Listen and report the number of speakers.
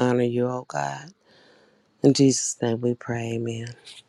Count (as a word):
one